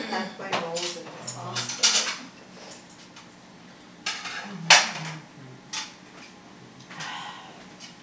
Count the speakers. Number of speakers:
1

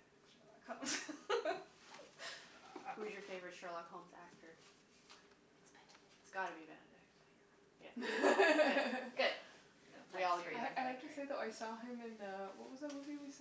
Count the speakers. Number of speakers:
3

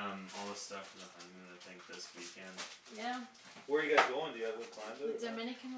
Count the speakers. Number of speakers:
3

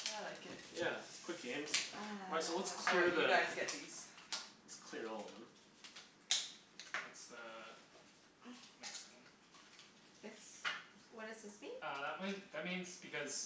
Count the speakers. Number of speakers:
4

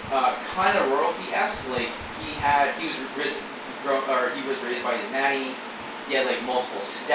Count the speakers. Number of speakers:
1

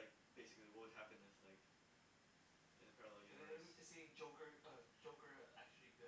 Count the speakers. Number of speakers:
2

